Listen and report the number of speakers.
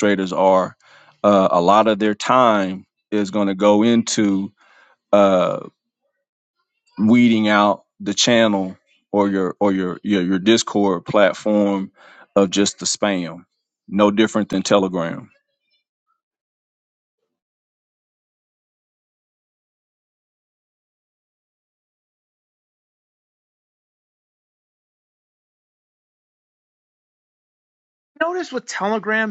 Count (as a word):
two